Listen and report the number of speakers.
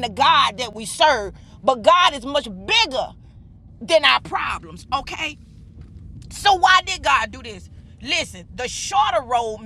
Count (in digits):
1